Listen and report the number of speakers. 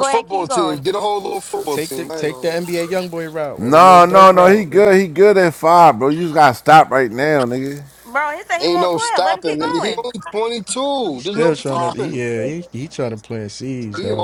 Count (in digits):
4